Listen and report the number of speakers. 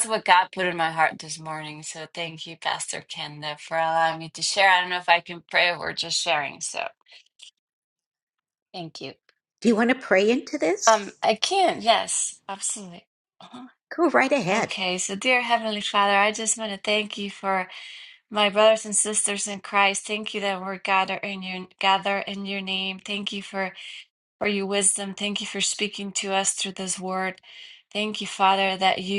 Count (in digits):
2